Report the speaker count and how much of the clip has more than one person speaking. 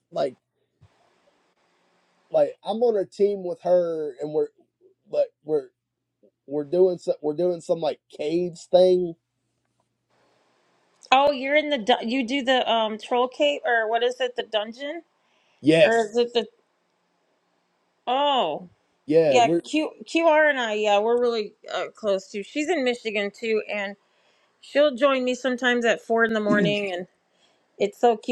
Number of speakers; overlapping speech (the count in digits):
2, about 1%